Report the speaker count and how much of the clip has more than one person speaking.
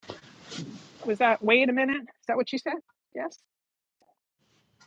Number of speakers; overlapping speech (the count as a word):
one, no overlap